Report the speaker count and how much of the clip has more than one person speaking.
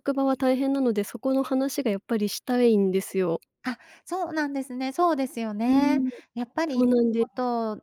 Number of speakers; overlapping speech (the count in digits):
2, about 7%